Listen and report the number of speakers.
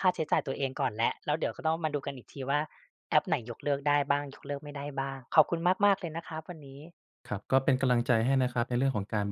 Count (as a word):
two